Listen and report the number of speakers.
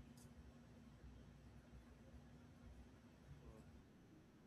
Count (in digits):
0